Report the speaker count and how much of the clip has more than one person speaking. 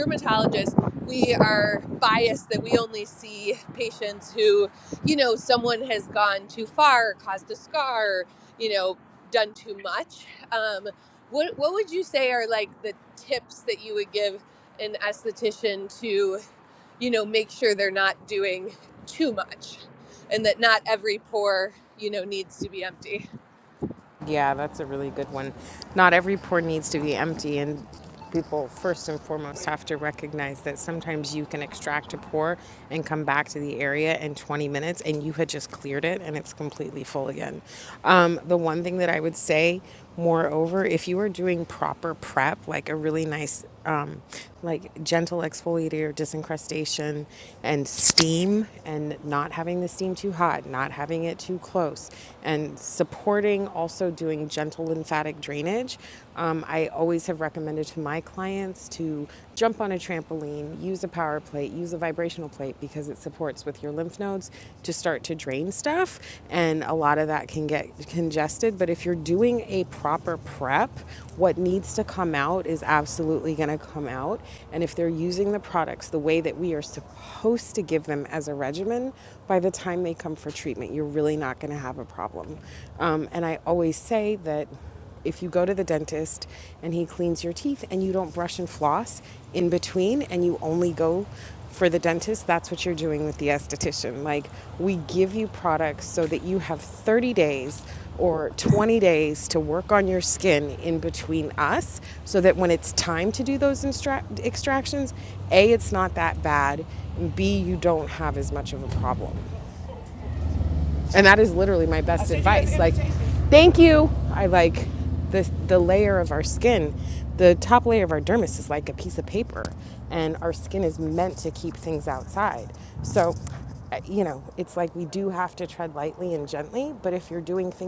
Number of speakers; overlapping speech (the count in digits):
2, no overlap